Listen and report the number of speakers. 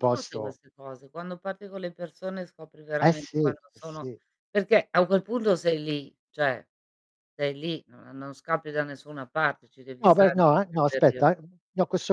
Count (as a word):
two